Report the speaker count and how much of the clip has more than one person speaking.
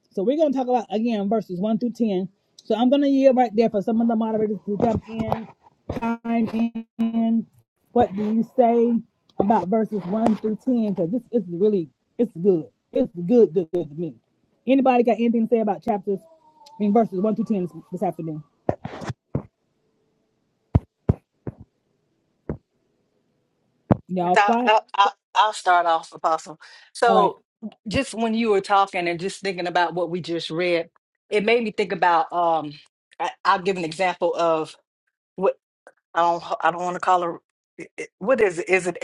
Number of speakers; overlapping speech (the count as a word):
two, about 1%